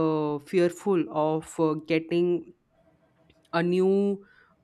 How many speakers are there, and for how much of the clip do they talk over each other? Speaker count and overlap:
1, no overlap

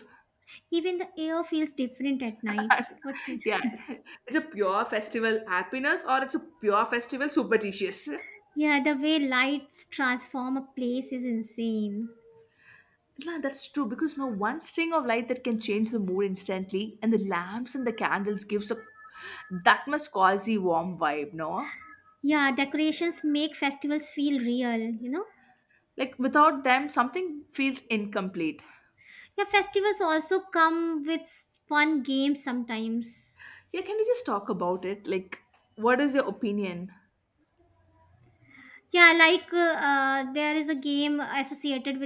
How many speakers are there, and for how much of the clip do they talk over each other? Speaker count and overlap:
2, no overlap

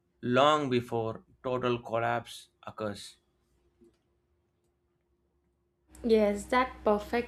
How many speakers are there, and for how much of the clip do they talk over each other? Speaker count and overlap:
2, no overlap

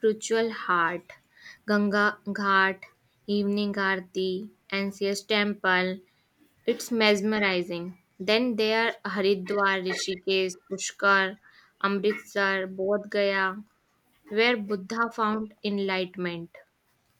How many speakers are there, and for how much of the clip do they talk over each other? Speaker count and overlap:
1, no overlap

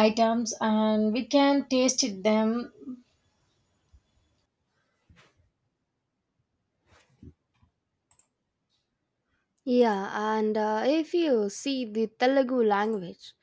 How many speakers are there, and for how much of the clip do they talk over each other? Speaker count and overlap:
2, no overlap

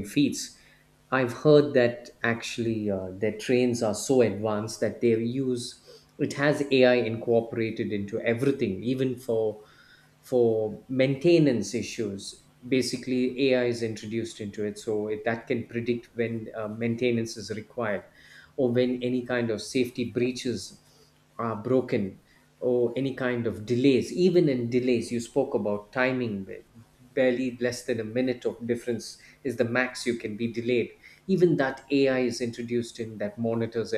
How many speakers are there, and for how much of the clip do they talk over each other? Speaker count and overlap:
1, no overlap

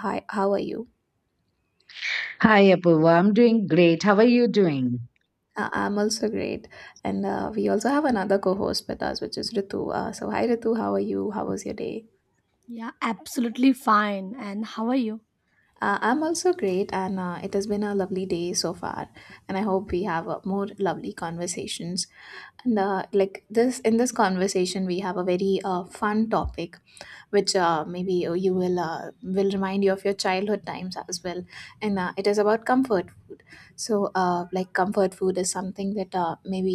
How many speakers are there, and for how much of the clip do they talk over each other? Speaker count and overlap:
3, no overlap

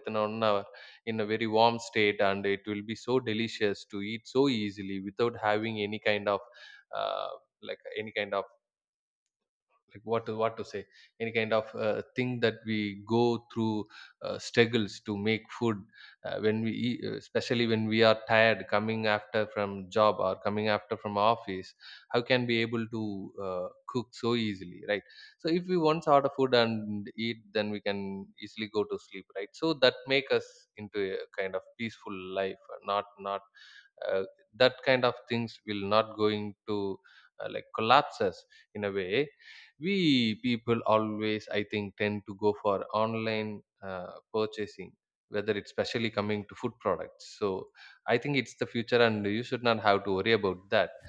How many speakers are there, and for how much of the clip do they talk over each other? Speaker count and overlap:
1, no overlap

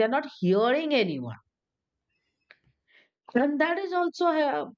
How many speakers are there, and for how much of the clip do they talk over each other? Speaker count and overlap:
1, no overlap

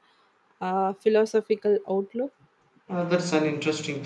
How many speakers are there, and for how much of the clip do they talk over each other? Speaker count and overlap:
2, no overlap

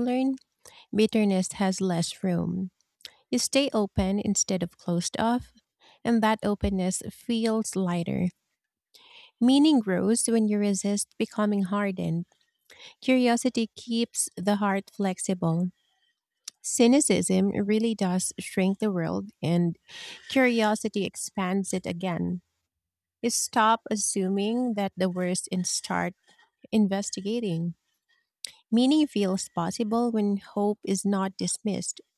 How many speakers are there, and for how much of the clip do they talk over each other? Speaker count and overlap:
1, no overlap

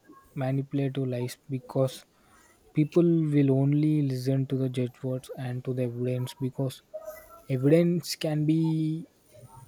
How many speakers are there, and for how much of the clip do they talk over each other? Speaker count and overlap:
1, no overlap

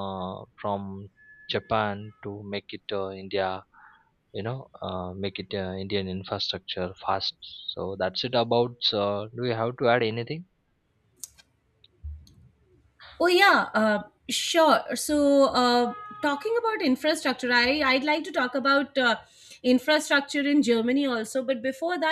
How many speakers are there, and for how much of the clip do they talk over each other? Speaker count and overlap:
2, no overlap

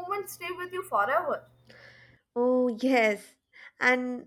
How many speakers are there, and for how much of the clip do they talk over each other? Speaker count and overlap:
2, no overlap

